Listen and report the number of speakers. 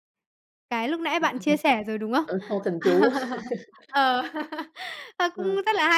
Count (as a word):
two